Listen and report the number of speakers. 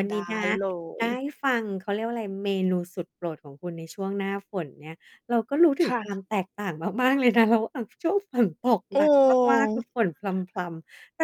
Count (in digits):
2